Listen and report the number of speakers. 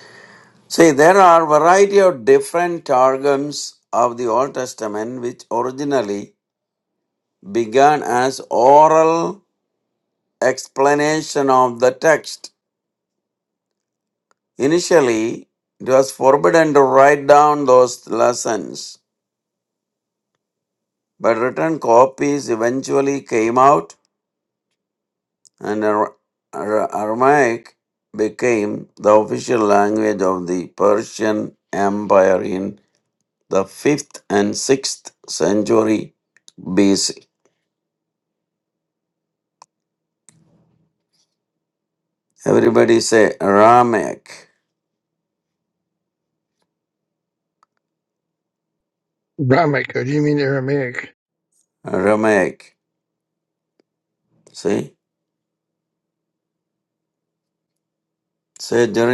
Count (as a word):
two